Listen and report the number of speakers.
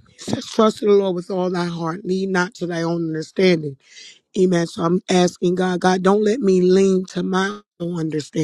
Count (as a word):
one